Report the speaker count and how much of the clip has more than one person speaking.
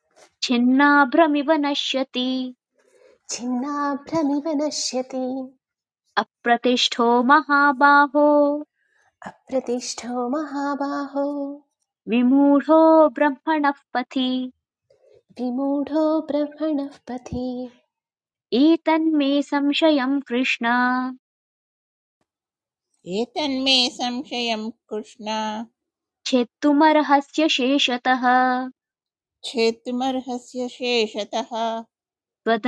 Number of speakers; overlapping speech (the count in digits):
3, no overlap